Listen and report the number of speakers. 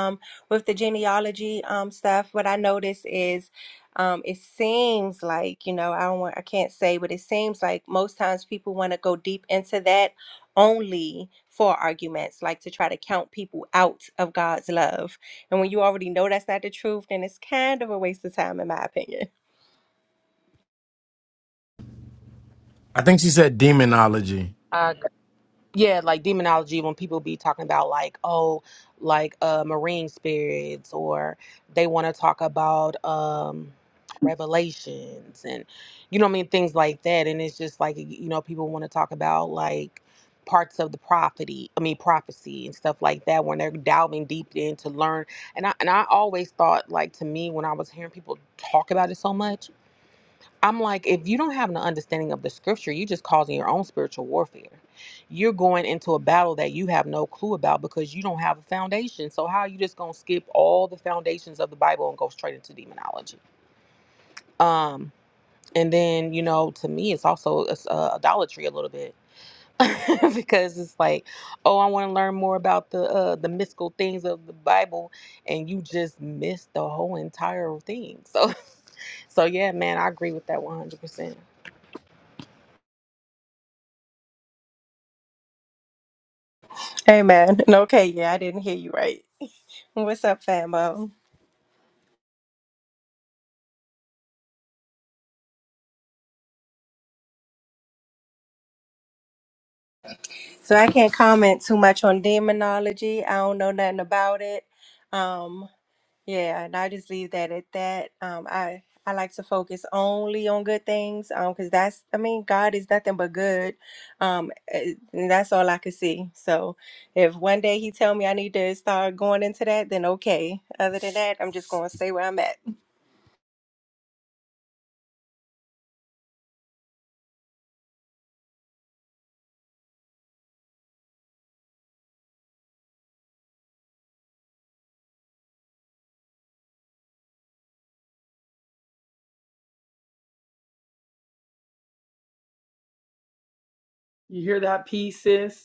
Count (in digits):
4